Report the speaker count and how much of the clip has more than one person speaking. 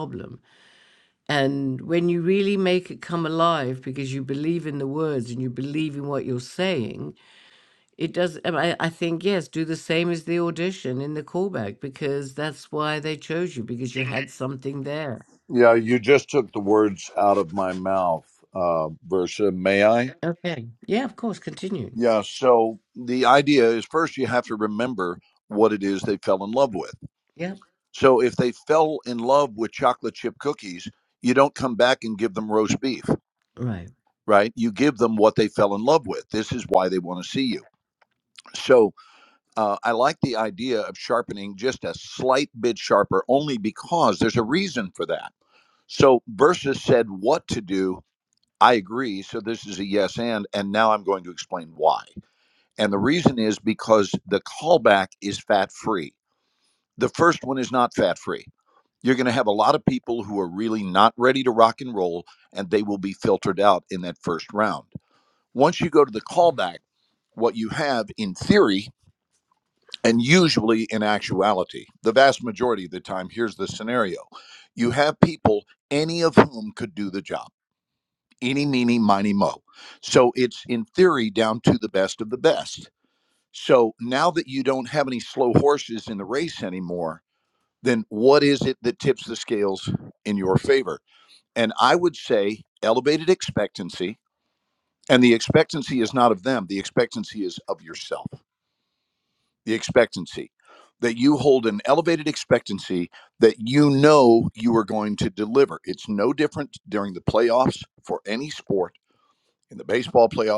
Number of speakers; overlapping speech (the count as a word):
two, no overlap